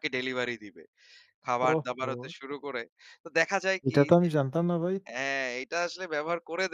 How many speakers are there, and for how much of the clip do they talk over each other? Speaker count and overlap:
two, about 17%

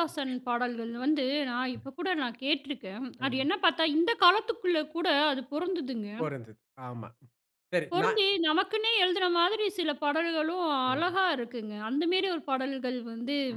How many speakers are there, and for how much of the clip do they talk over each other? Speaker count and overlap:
two, about 4%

